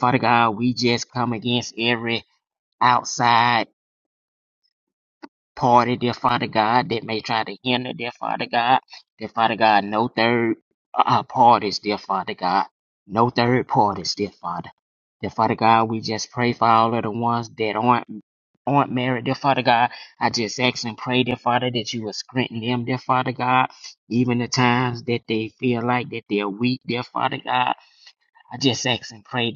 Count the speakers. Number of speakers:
one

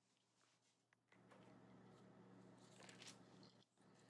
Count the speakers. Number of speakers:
zero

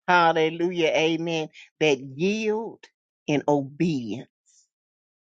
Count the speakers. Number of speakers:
one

